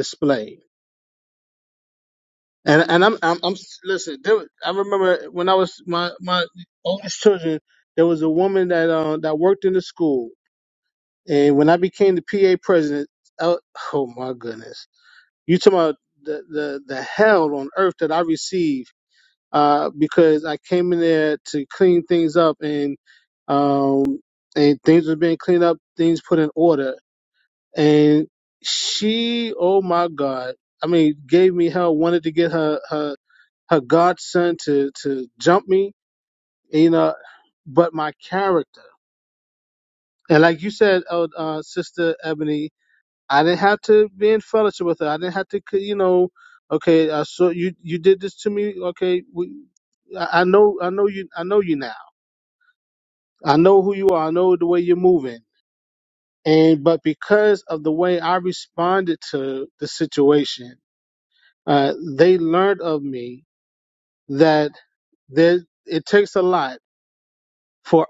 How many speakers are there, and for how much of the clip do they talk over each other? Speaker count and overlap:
1, no overlap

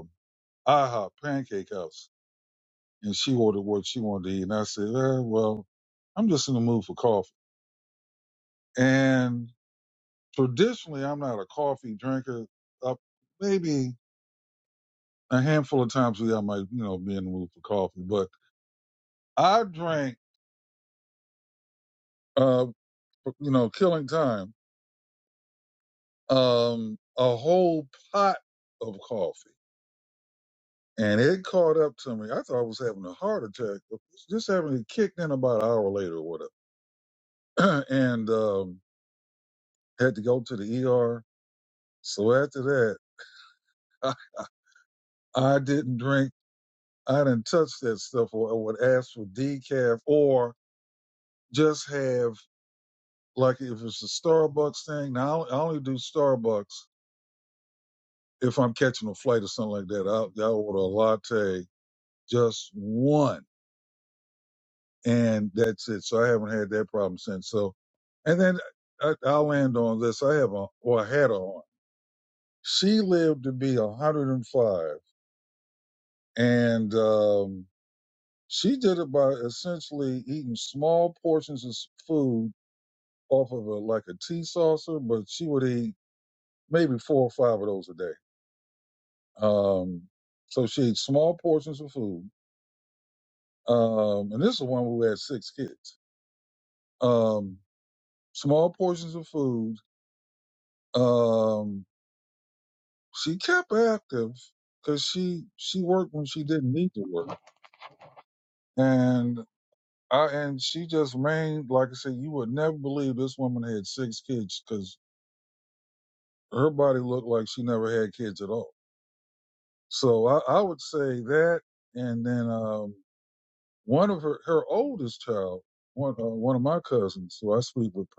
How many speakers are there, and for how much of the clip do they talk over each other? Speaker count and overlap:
1, no overlap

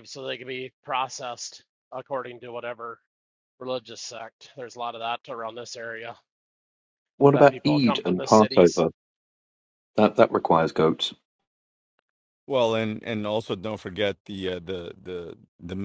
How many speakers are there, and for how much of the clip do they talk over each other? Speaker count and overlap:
3, about 8%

